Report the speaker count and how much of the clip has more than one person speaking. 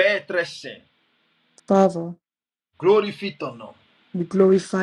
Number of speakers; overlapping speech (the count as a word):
two, no overlap